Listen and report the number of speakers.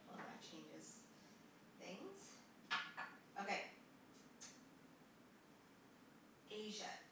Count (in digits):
1